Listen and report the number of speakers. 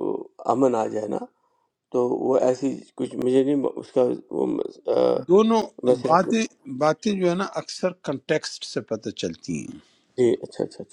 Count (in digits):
2